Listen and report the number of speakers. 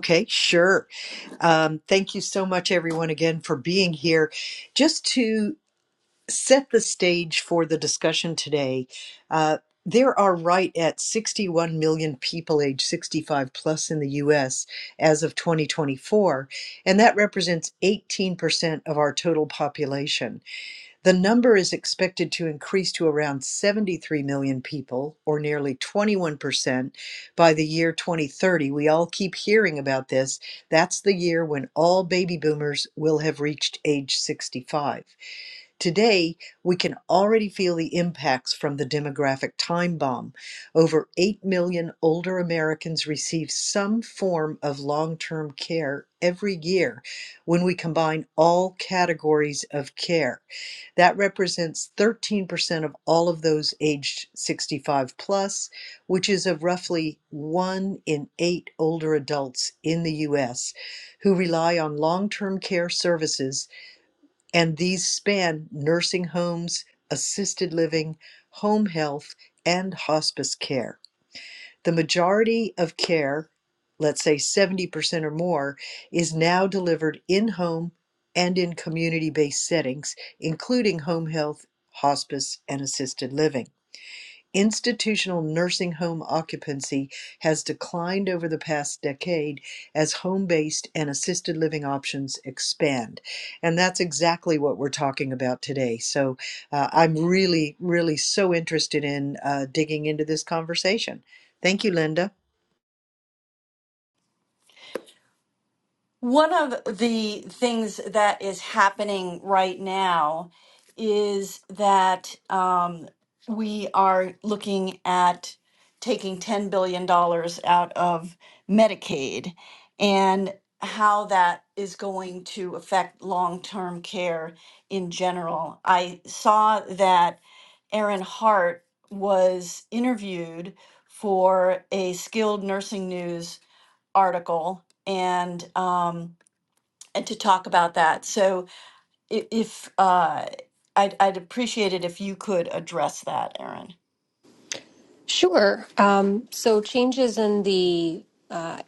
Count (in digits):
3